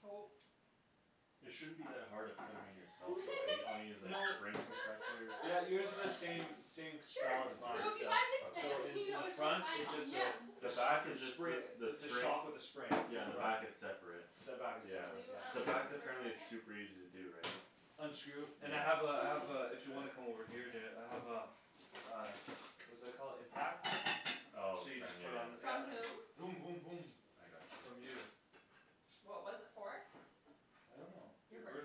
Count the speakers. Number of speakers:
4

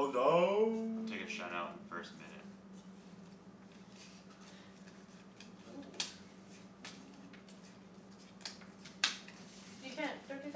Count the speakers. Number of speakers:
3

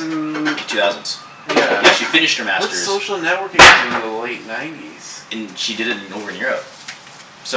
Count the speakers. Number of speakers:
2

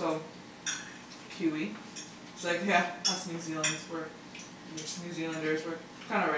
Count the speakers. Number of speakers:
1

